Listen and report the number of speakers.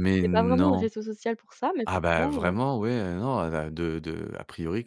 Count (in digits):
2